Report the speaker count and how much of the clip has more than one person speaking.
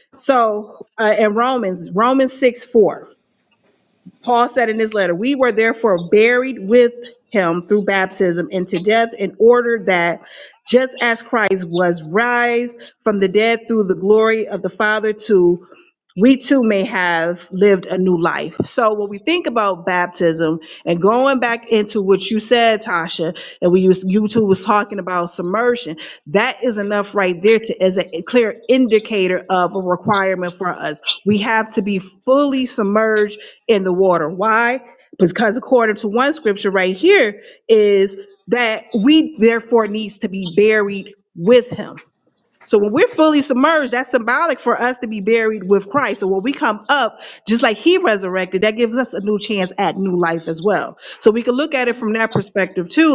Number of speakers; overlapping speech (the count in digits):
1, no overlap